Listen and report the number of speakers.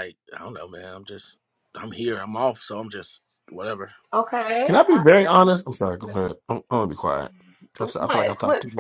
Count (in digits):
3